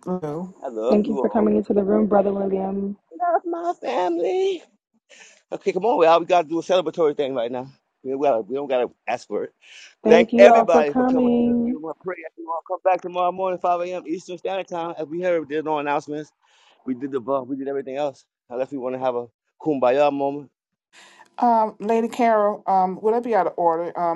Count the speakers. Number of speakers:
three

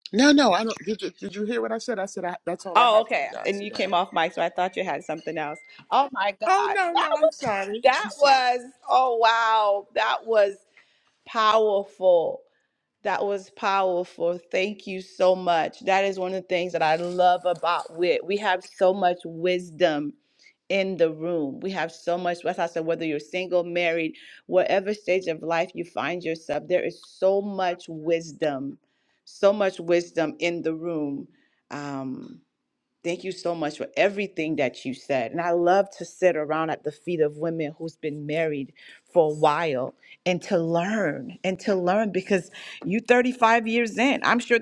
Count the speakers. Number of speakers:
two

